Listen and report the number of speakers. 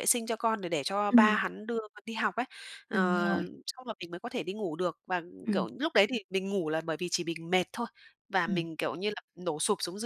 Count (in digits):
2